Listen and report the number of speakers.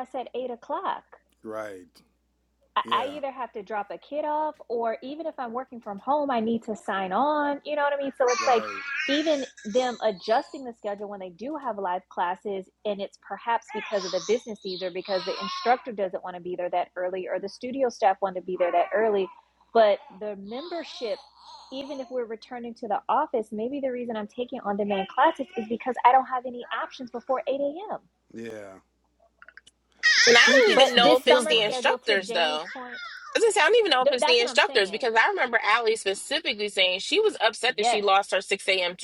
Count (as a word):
three